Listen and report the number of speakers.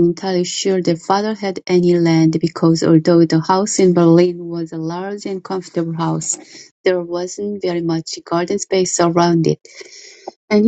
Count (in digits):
1